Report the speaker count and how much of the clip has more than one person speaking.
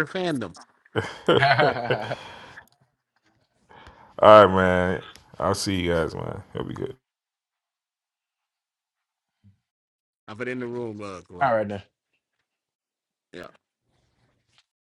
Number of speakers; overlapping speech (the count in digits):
3, under 1%